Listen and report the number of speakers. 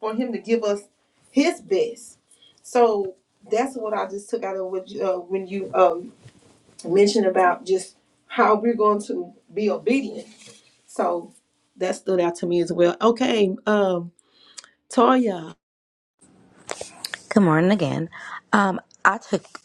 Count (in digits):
2